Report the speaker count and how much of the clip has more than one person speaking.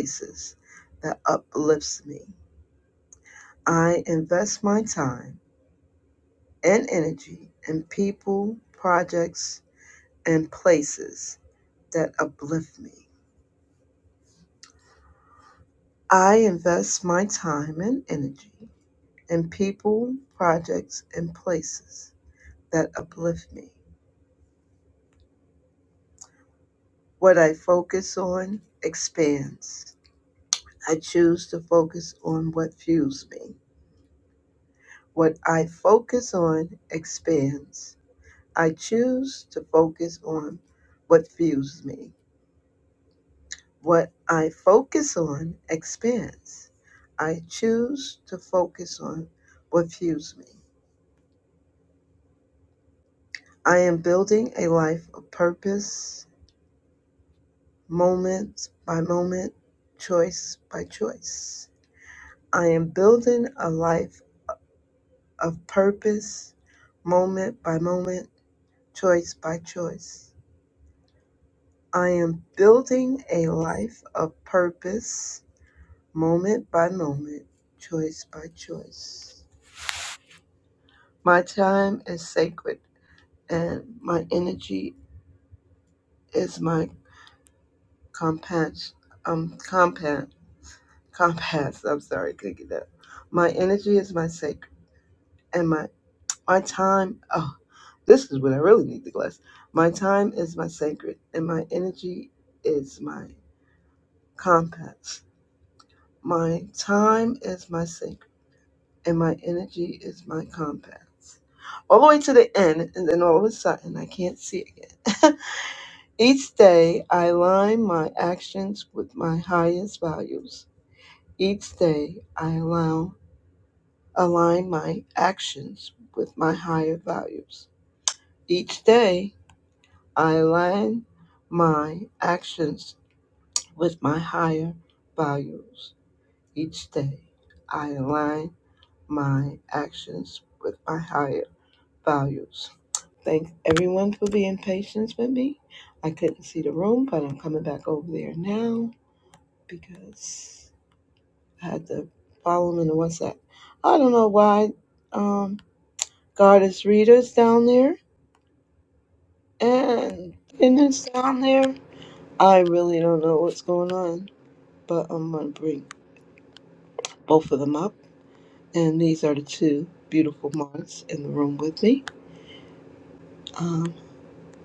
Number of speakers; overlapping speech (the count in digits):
1, no overlap